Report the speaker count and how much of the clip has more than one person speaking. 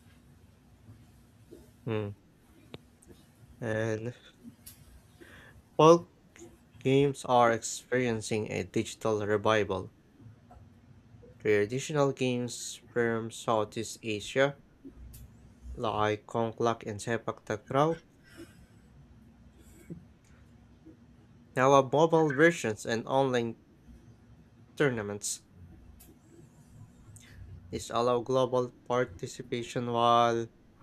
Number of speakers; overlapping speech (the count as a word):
one, no overlap